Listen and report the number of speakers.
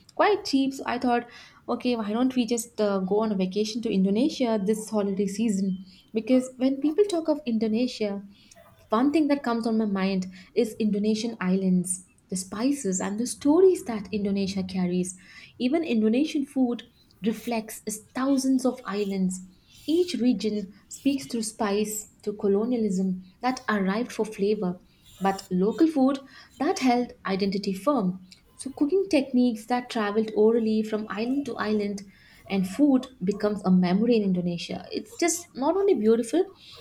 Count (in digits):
1